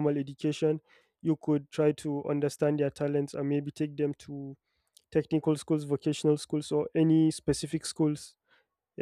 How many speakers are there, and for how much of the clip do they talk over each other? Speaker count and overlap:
1, no overlap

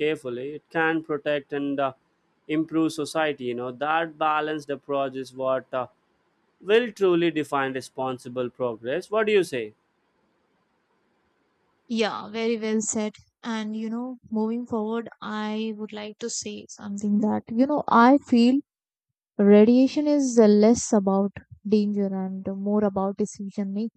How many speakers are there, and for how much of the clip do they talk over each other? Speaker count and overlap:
2, no overlap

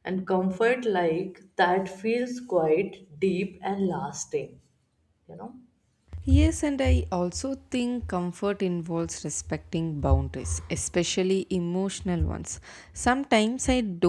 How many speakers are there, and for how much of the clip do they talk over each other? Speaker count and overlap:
2, no overlap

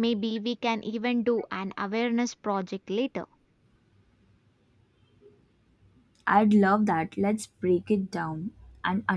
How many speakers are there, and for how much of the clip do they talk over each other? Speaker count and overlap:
2, no overlap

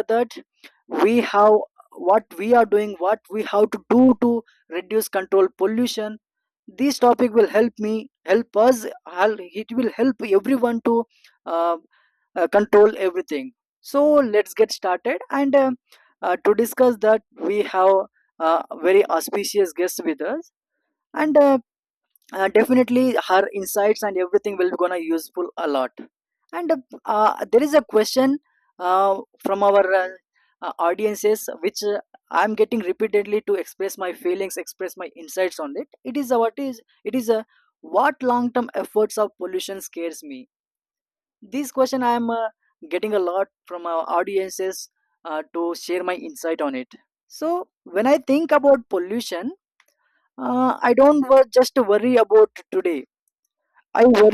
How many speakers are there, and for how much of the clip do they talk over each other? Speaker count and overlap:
1, no overlap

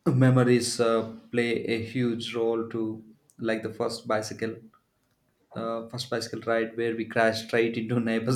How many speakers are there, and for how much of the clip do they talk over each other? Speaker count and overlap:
1, no overlap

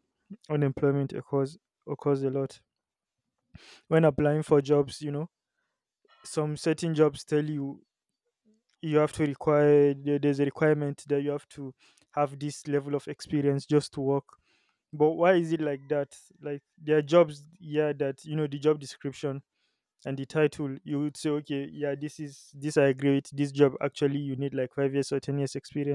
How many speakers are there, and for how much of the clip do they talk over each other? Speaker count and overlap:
1, no overlap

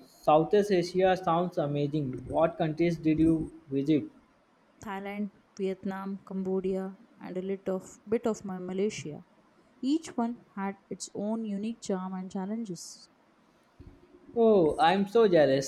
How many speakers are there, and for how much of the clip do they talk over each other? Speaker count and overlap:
2, no overlap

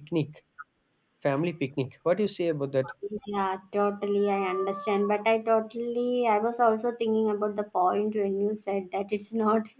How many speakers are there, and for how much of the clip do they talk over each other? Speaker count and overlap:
2, no overlap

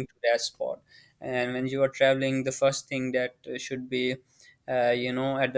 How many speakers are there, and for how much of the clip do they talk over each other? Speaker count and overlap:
1, no overlap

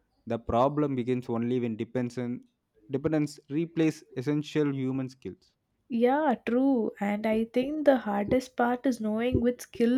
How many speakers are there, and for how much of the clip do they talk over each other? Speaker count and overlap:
2, no overlap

